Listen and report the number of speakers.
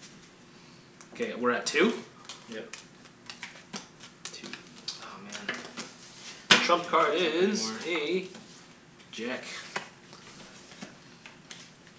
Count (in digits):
2